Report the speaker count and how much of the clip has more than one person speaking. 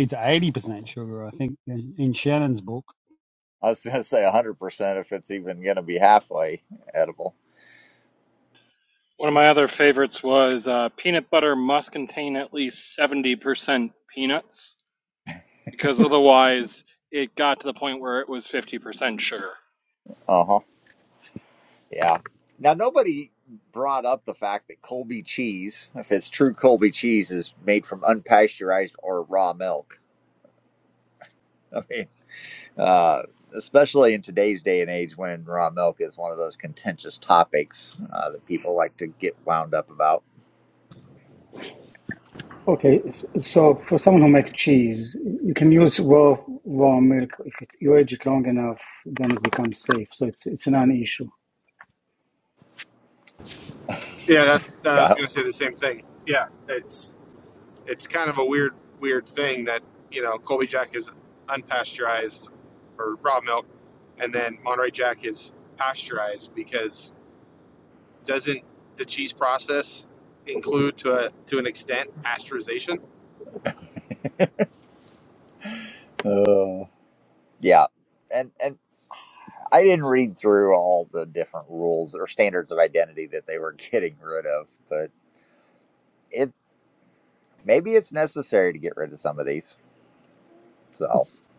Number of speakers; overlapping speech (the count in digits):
5, under 1%